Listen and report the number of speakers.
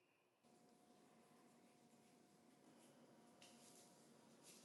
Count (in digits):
0